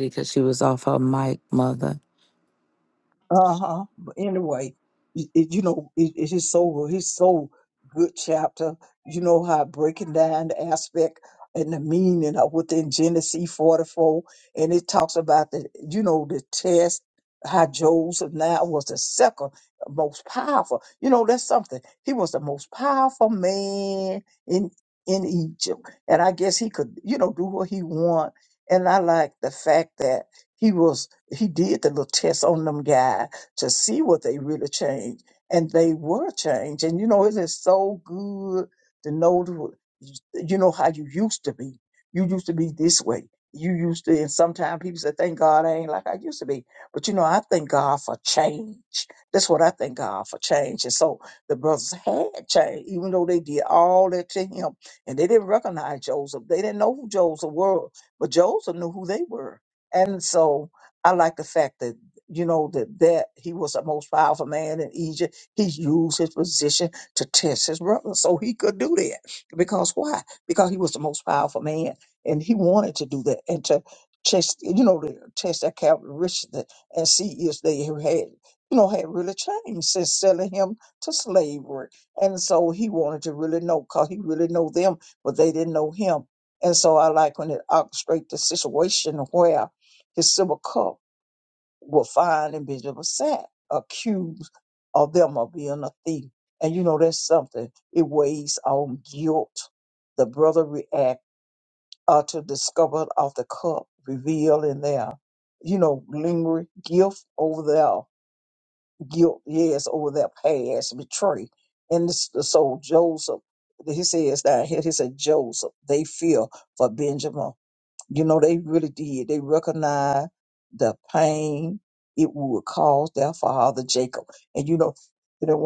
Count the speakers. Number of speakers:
two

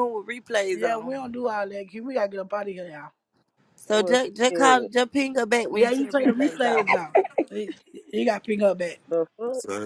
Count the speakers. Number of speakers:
three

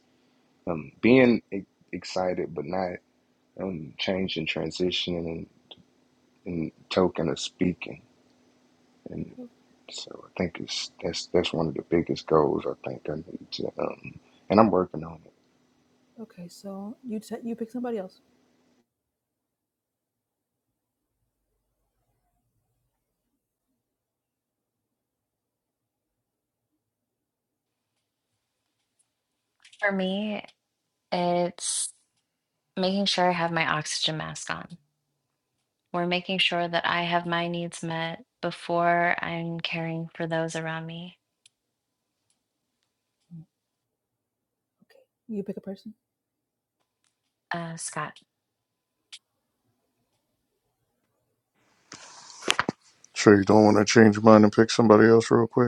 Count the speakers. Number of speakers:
four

